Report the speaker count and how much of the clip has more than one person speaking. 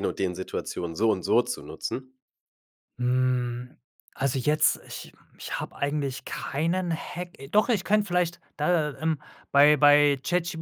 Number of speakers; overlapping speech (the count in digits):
2, no overlap